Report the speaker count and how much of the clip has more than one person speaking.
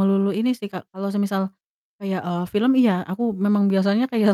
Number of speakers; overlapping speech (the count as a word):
one, no overlap